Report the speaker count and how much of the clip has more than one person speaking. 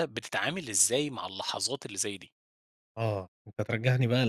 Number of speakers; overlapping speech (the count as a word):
two, no overlap